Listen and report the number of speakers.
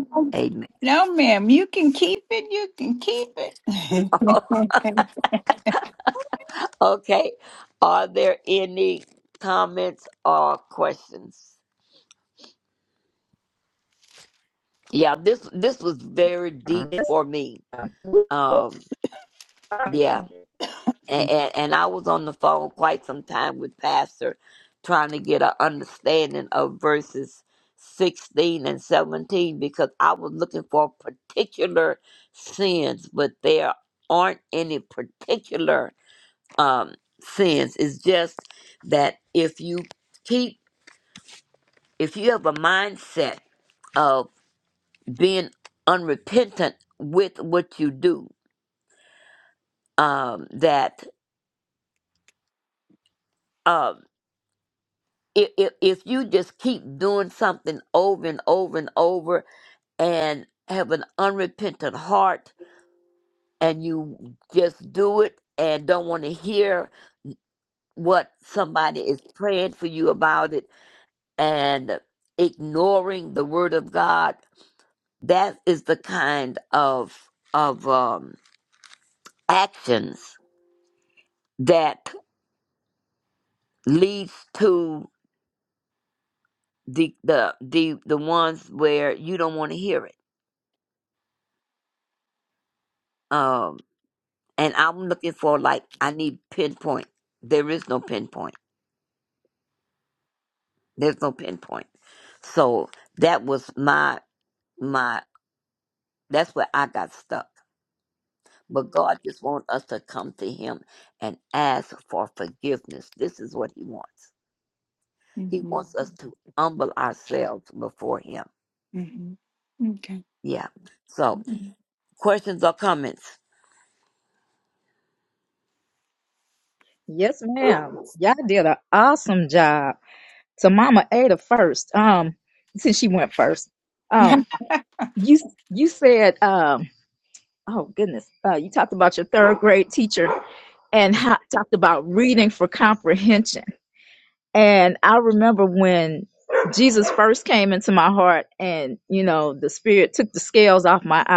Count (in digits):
3